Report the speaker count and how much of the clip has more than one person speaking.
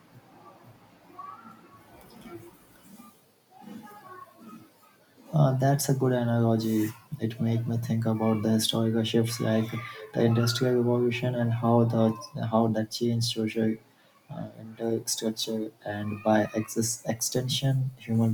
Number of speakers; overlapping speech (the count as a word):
one, no overlap